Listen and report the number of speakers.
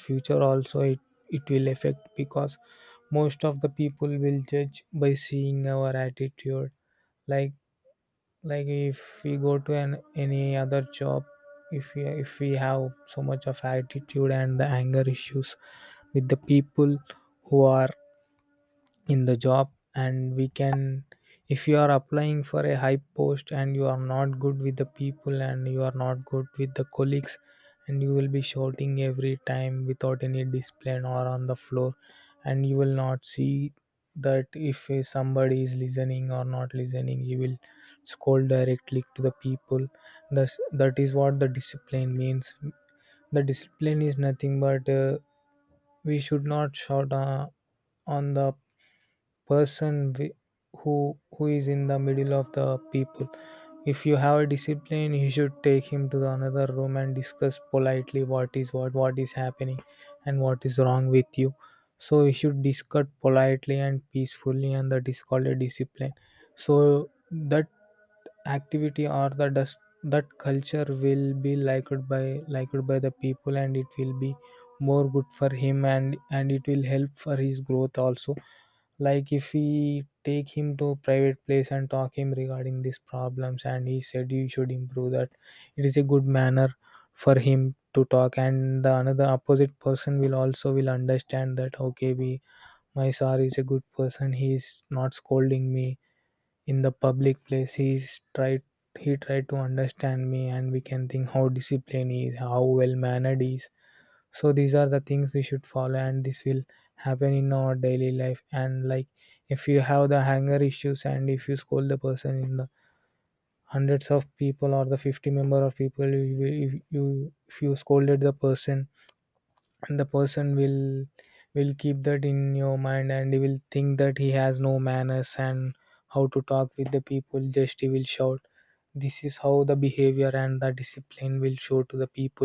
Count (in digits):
1